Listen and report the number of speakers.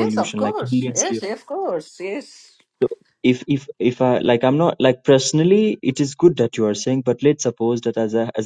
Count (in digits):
2